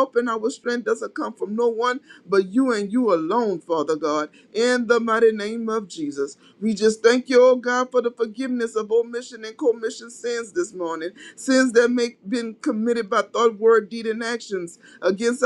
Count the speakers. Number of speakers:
one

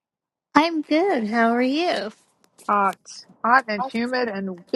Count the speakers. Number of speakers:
two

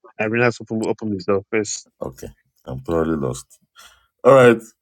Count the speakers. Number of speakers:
two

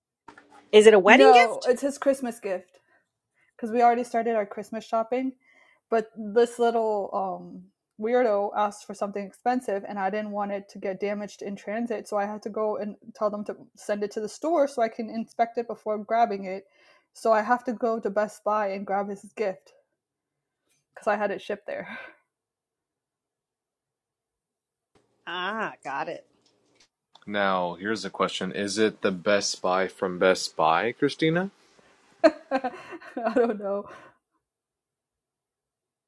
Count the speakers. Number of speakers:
three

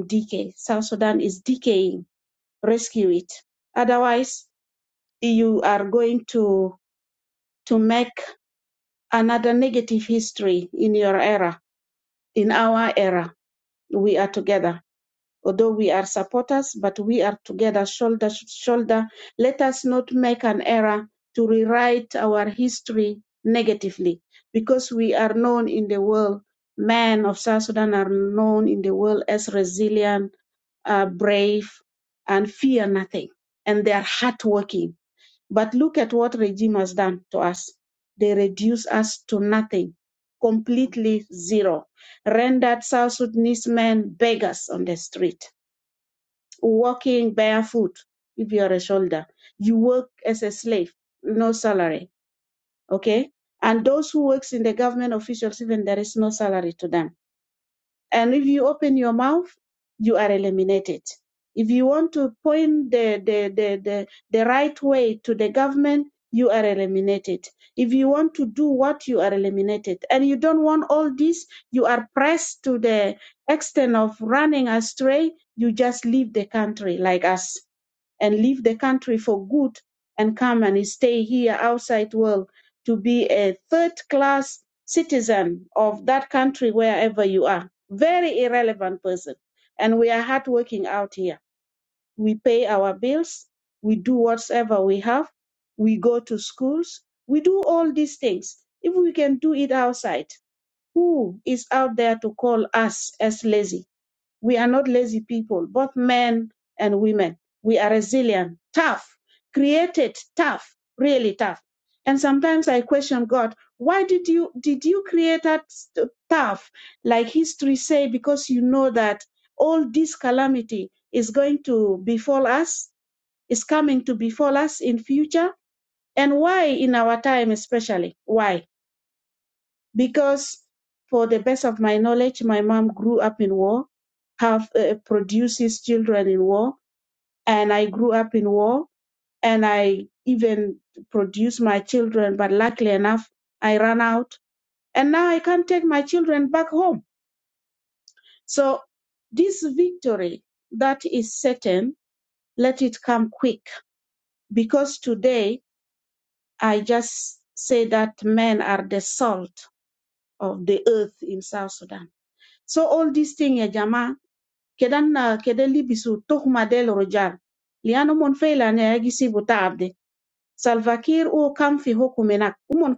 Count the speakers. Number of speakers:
one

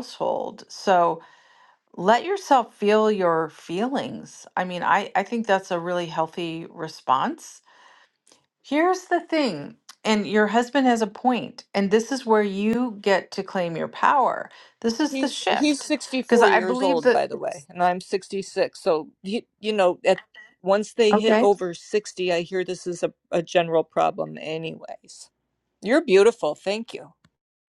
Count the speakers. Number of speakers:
two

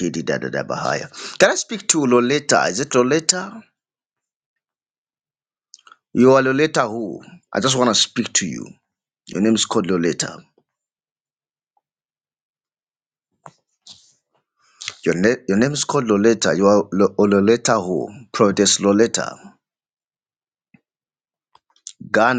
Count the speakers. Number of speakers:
one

